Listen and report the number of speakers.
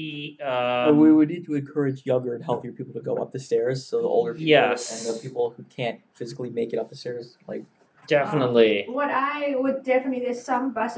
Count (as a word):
three